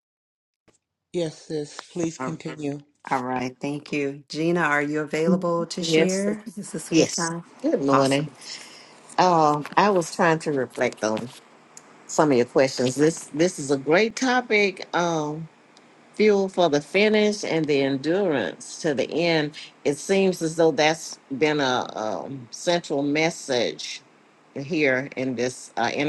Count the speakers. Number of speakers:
3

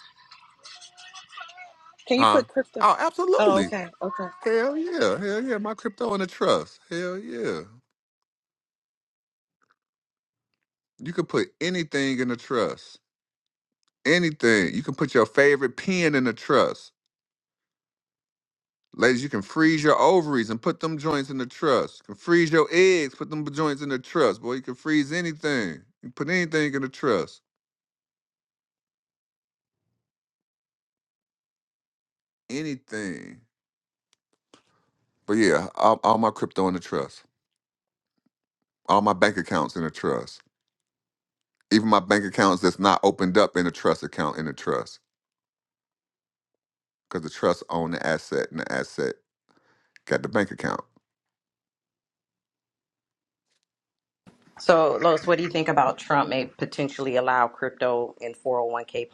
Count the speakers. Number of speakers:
3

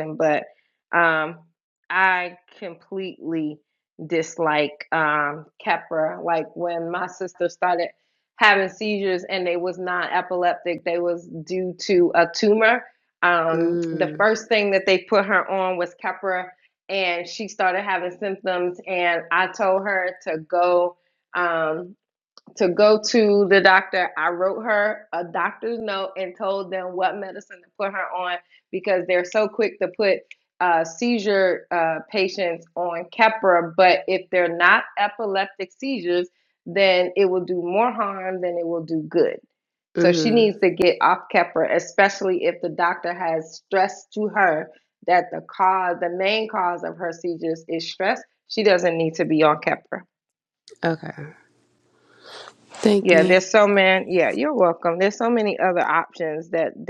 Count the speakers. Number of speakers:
2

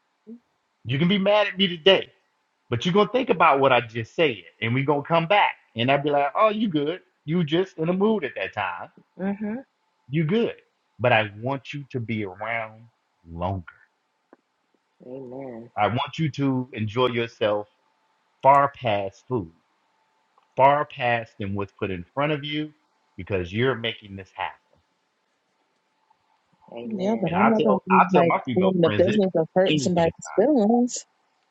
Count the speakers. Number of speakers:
3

